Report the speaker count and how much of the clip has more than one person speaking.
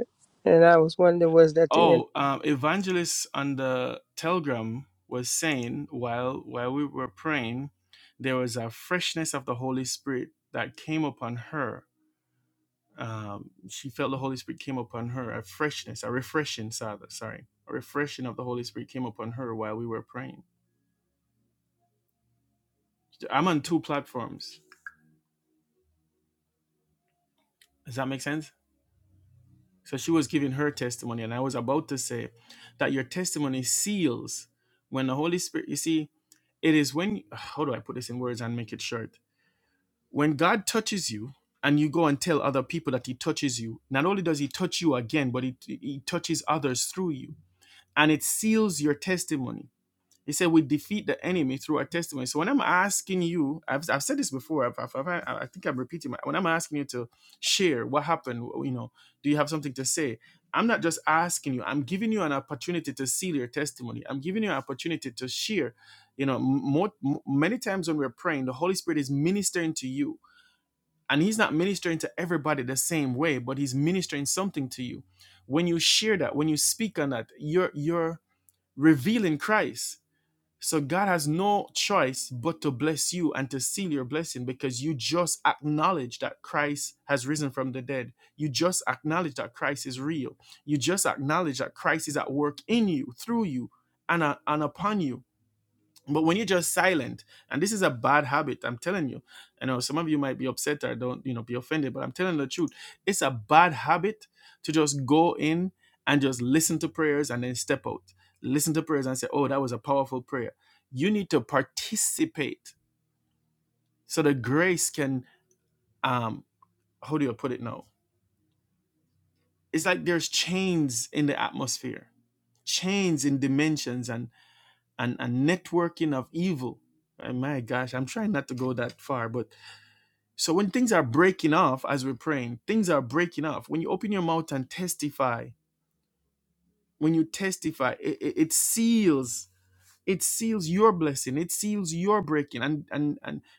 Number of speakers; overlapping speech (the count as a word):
two, under 1%